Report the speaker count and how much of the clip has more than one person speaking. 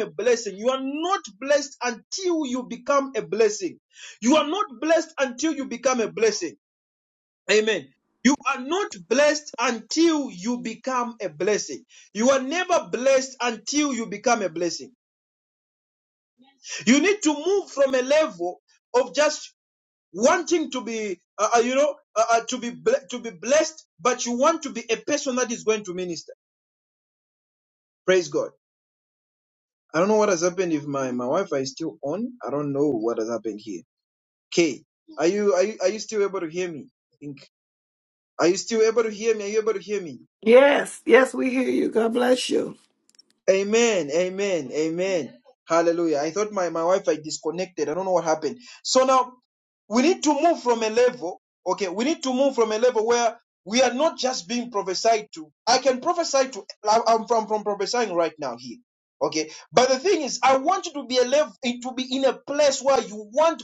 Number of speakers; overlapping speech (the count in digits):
2, no overlap